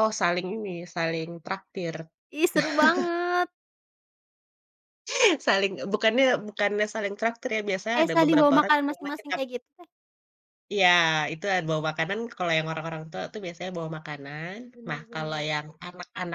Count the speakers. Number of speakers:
2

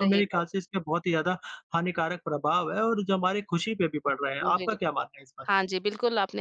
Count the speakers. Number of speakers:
2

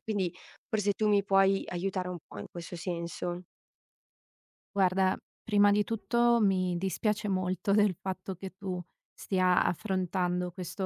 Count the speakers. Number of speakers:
2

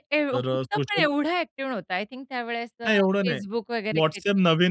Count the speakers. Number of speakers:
2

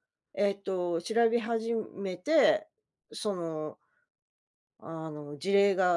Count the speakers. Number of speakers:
1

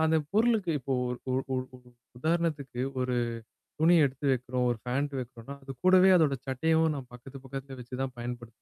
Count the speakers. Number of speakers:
1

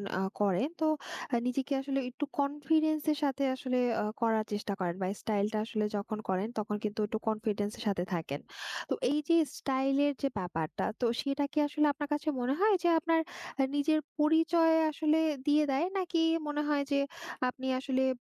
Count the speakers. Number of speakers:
1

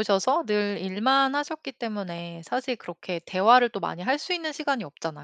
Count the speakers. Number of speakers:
1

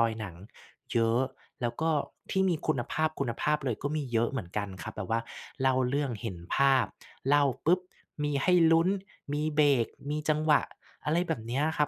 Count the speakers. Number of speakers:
1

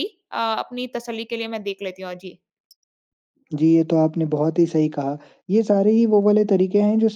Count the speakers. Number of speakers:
2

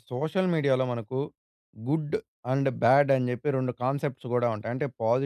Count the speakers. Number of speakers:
1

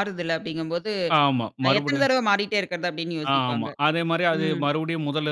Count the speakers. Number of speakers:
2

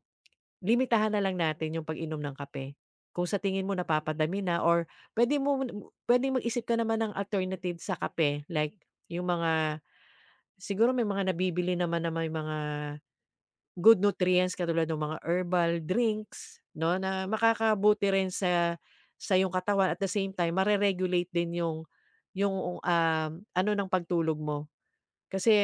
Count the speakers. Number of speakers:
1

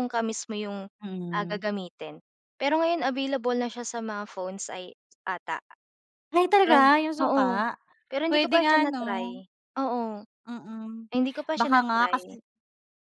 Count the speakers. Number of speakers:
2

